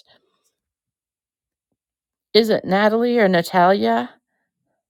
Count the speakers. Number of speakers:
1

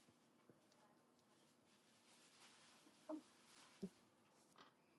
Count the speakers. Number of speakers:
0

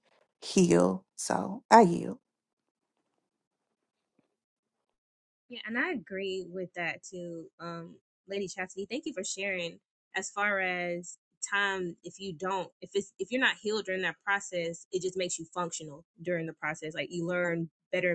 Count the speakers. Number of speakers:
2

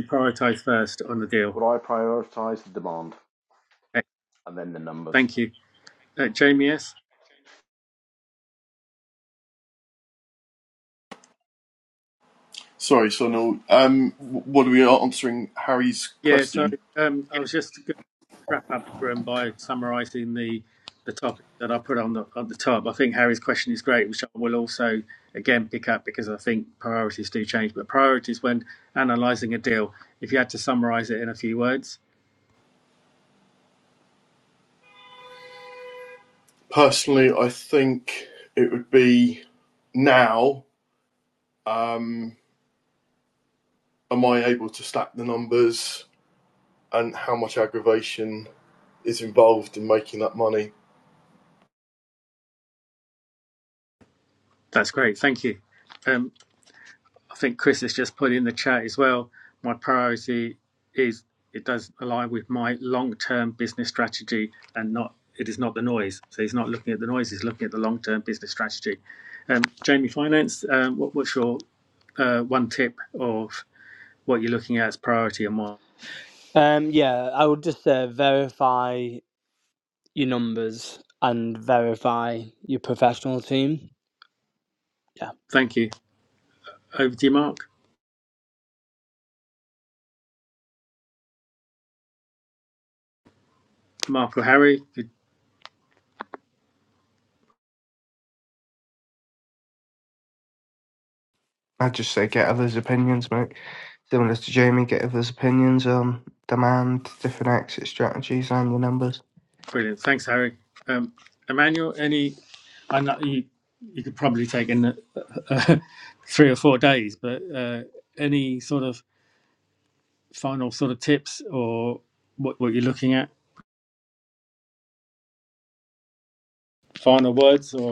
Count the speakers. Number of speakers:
5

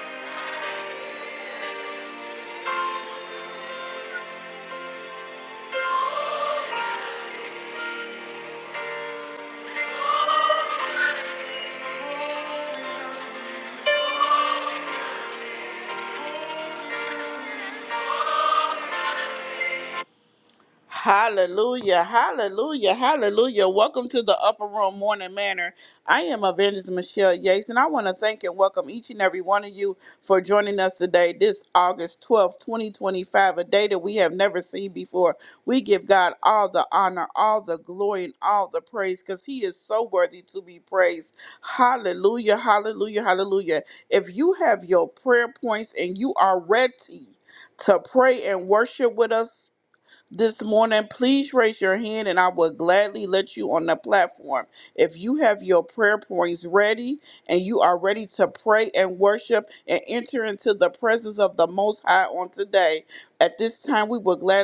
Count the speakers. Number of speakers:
1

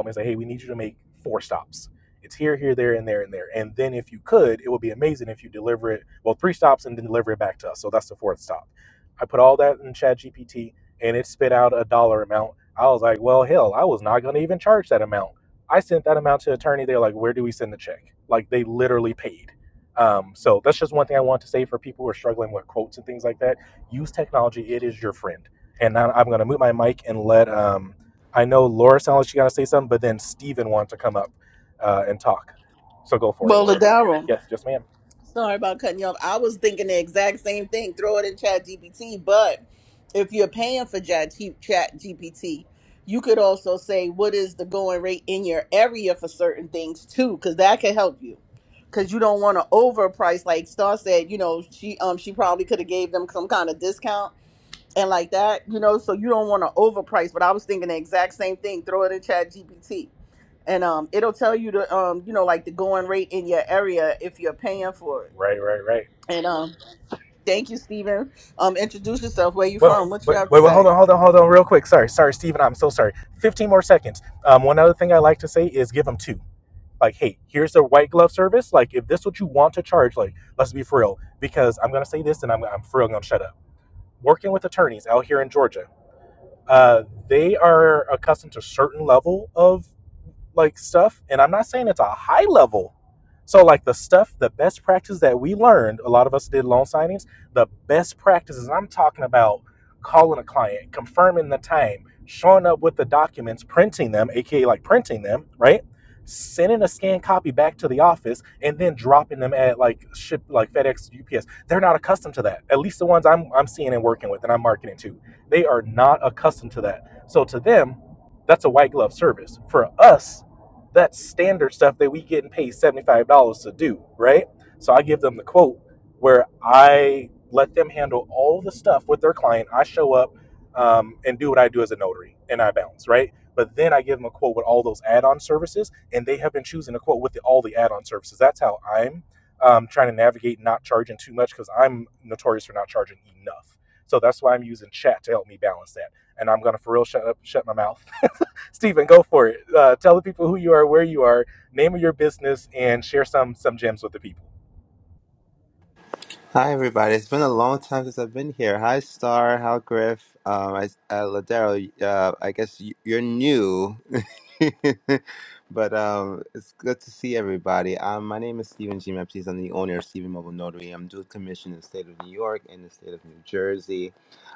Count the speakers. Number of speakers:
3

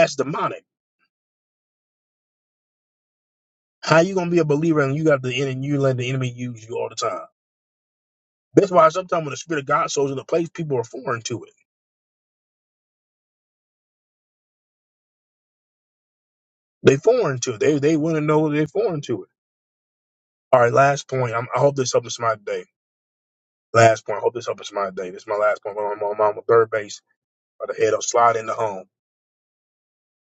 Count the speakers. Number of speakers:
1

